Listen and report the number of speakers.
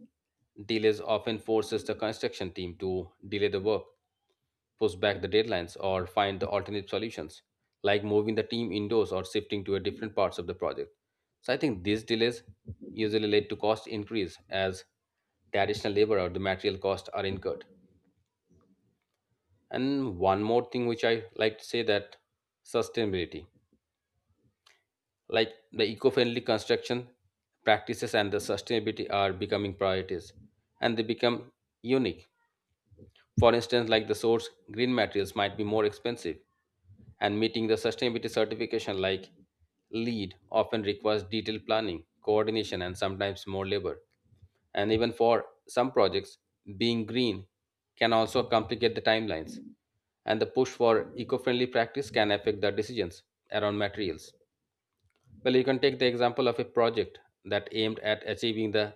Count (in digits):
1